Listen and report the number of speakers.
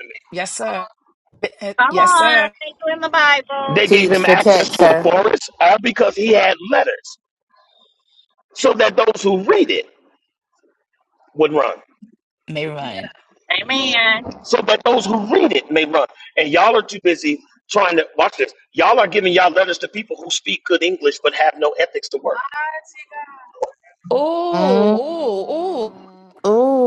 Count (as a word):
four